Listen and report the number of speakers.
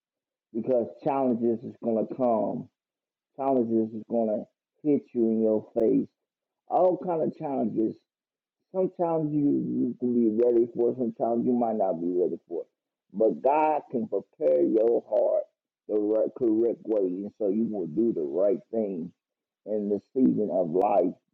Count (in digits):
1